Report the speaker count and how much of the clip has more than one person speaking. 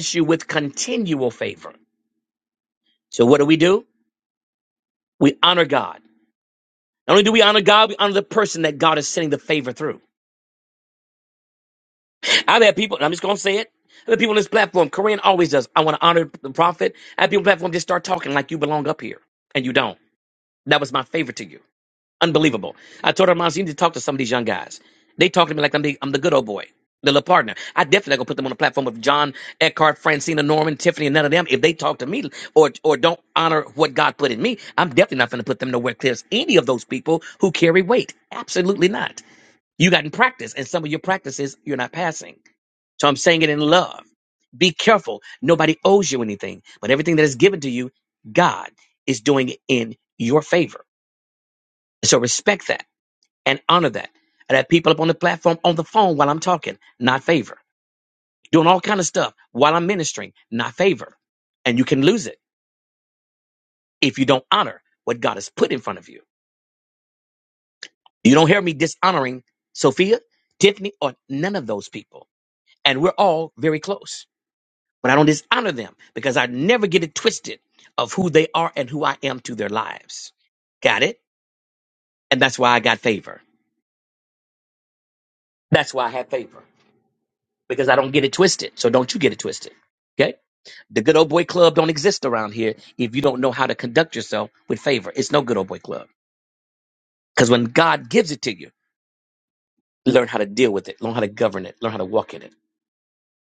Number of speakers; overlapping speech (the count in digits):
1, no overlap